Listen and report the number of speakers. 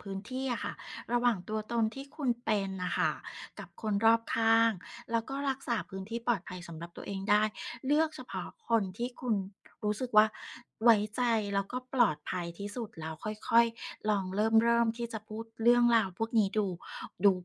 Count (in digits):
1